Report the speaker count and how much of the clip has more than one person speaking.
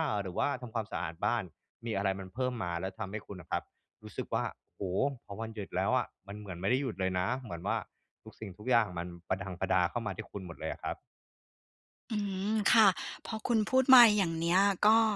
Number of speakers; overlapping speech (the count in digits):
2, no overlap